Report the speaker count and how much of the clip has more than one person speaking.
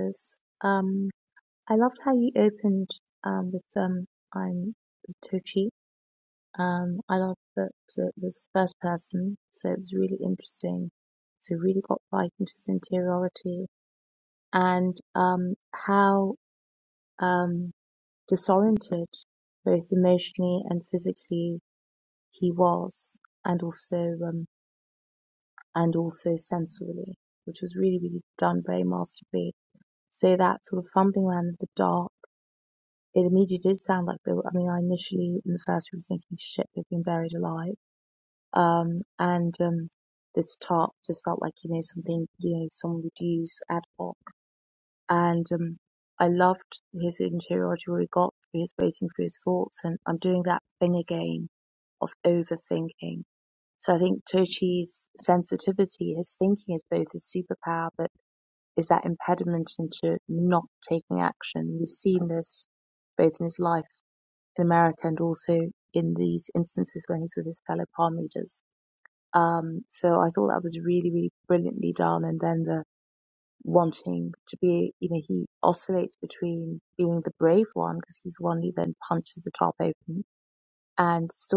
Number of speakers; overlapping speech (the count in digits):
1, no overlap